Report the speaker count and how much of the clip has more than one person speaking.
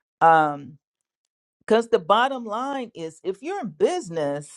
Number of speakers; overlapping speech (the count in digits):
1, no overlap